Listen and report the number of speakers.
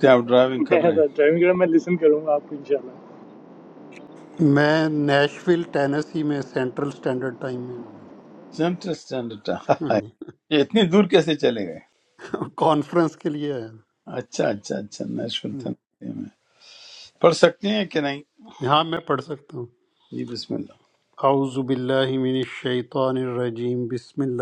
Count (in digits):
3